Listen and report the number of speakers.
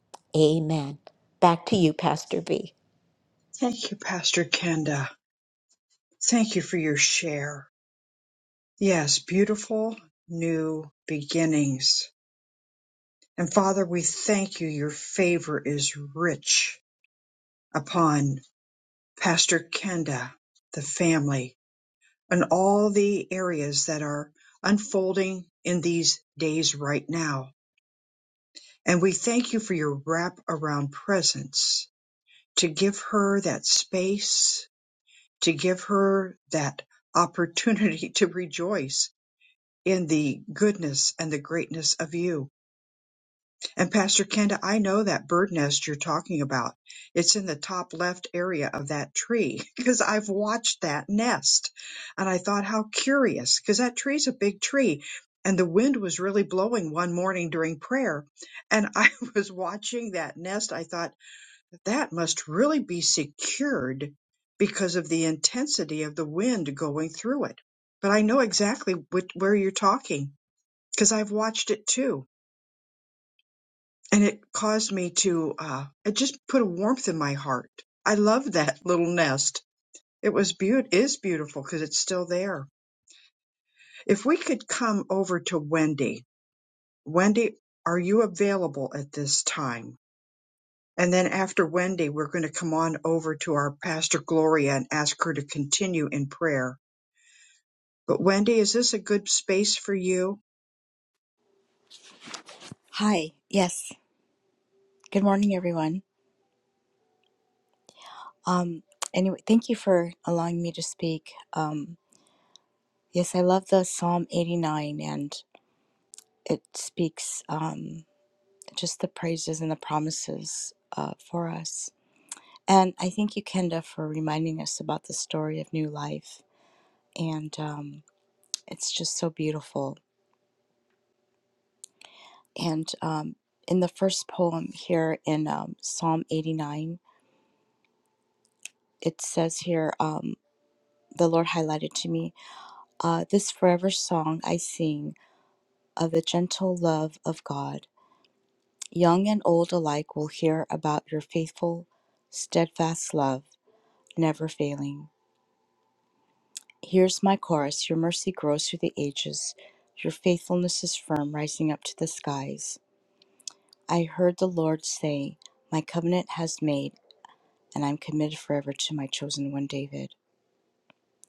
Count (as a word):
three